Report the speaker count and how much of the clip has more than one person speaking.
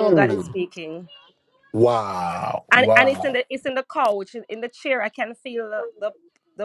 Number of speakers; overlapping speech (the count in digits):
2, about 18%